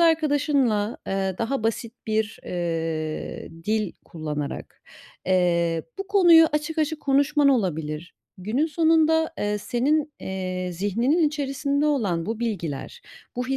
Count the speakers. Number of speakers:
1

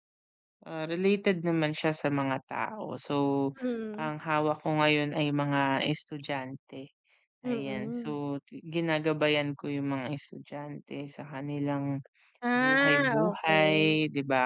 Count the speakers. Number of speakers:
2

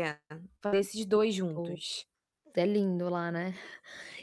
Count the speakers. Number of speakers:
2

